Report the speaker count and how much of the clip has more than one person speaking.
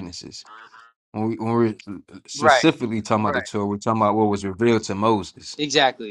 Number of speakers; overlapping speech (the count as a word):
two, about 10%